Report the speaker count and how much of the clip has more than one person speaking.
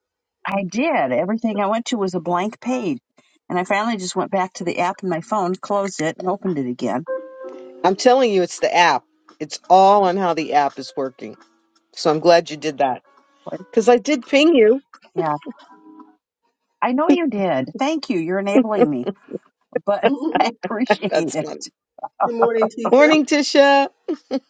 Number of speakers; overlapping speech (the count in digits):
3, about 5%